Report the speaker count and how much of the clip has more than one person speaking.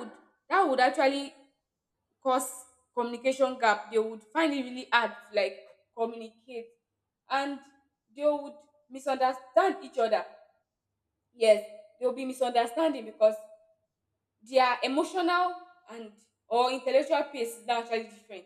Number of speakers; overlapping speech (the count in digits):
1, no overlap